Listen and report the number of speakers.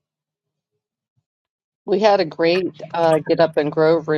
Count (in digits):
1